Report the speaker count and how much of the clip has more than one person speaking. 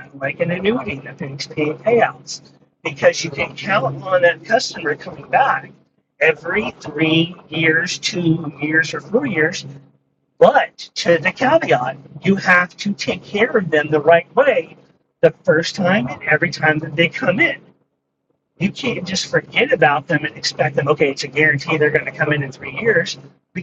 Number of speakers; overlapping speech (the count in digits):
1, no overlap